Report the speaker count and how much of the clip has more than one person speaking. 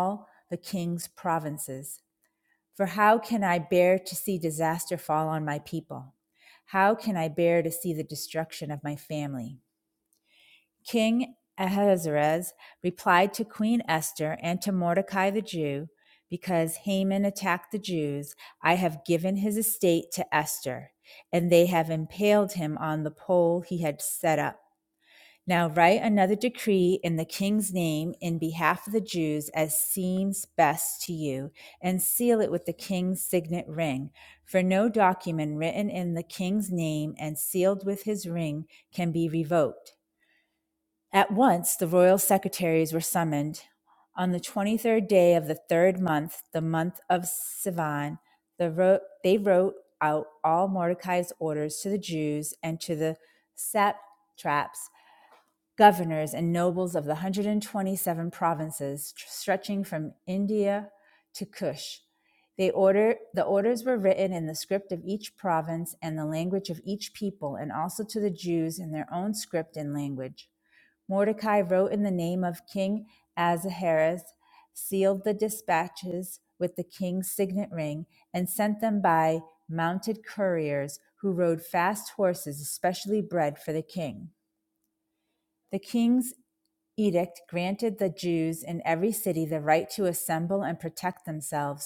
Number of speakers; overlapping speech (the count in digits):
1, no overlap